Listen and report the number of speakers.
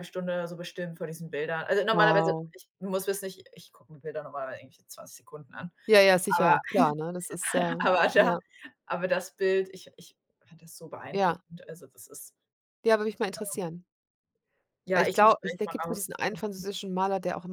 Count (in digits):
2